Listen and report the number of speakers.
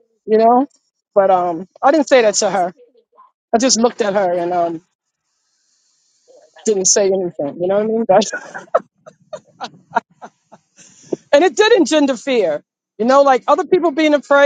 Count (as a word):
one